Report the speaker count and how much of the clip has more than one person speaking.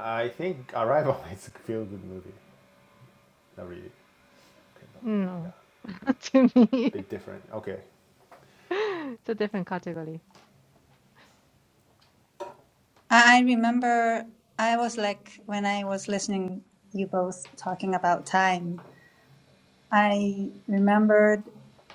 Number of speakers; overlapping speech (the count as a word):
three, about 1%